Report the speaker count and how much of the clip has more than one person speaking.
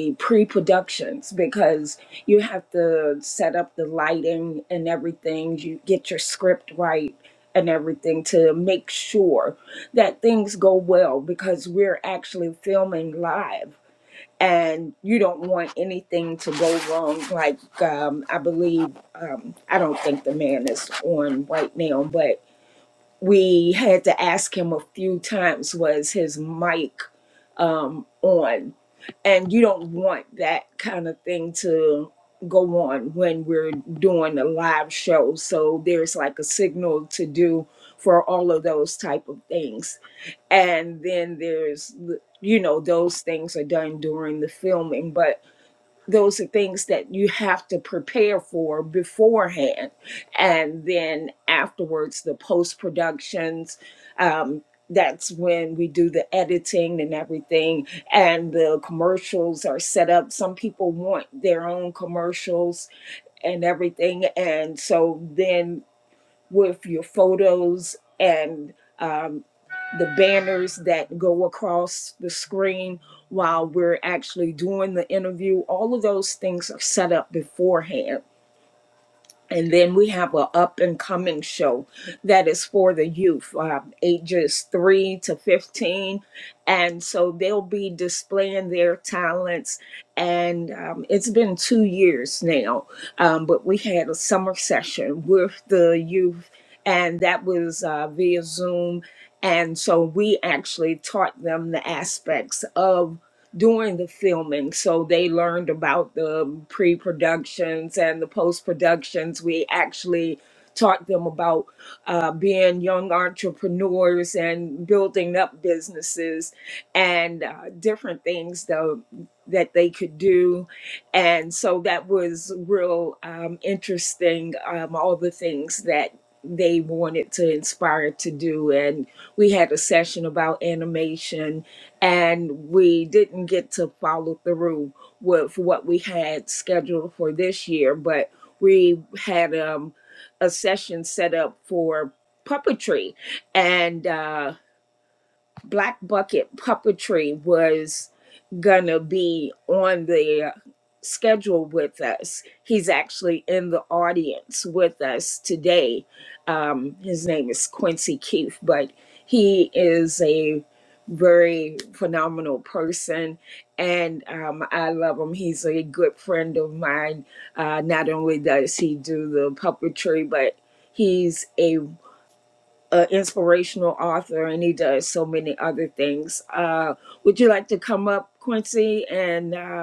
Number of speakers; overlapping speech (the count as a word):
one, no overlap